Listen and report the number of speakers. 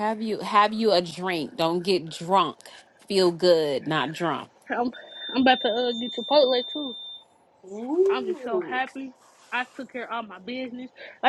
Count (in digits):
3